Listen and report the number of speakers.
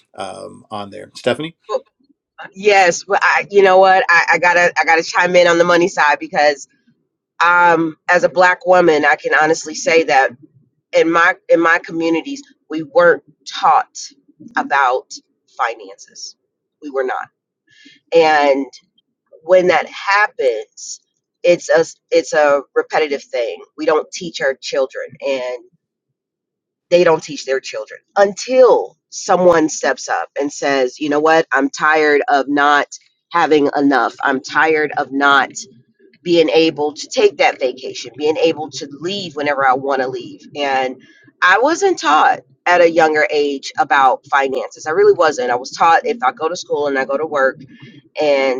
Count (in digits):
2